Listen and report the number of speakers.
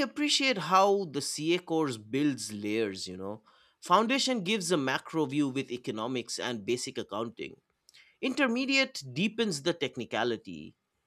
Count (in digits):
1